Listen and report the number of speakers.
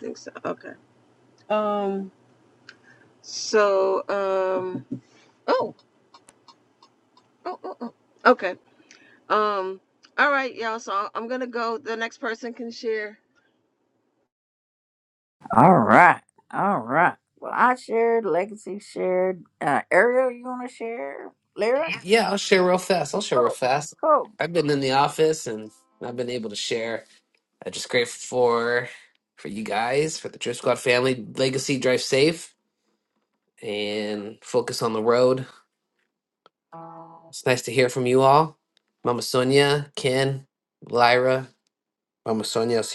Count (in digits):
3